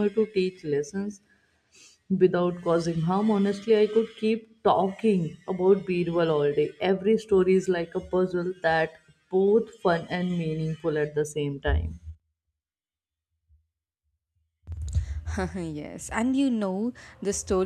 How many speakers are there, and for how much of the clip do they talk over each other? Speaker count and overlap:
2, no overlap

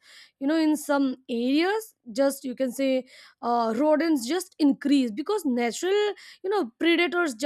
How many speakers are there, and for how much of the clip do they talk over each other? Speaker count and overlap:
1, no overlap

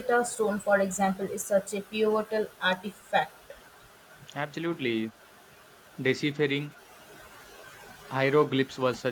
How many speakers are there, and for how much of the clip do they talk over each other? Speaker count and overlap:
2, no overlap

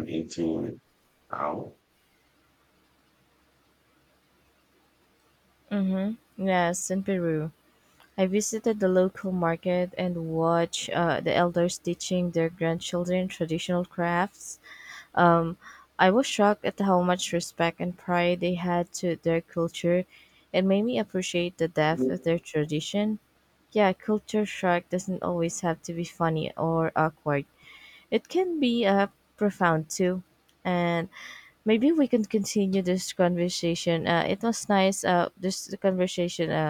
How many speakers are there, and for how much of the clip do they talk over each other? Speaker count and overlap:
2, no overlap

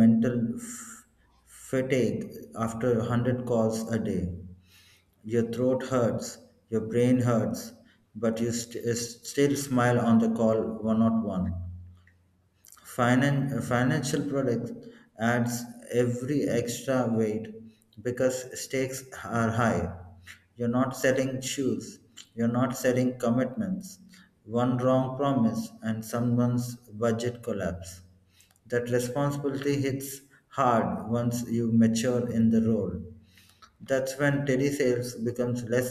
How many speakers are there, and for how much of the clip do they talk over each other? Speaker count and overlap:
1, no overlap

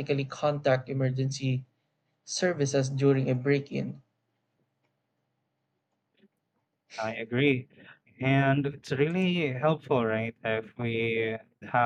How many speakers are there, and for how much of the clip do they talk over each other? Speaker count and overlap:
2, no overlap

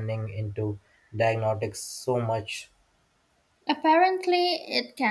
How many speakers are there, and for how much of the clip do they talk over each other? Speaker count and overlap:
2, no overlap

